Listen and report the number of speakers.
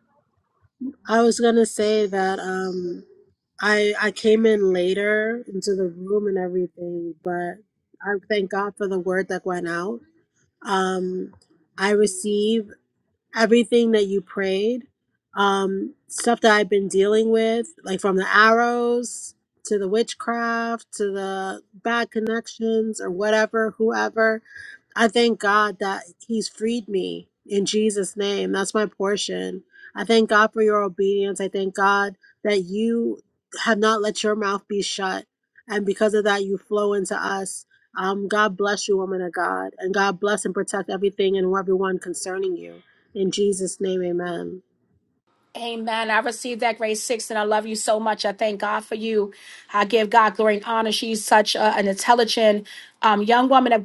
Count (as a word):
two